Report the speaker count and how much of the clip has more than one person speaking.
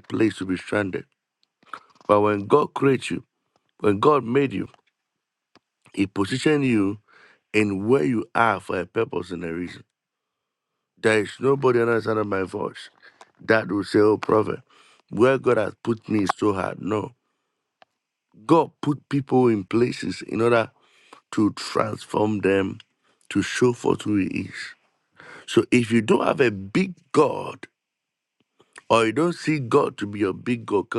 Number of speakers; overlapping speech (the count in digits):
1, no overlap